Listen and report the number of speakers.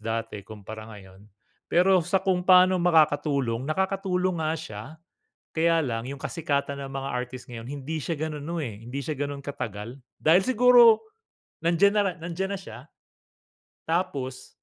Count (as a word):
one